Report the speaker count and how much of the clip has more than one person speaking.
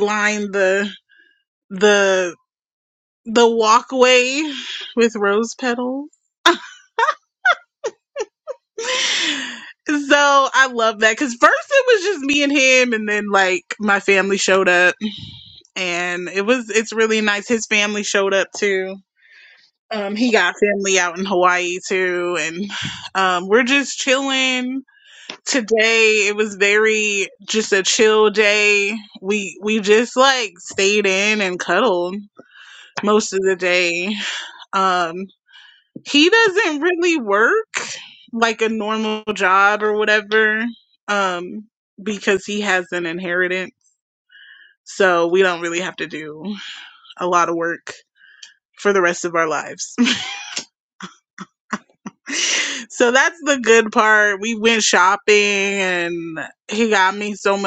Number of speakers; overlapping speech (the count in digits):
1, no overlap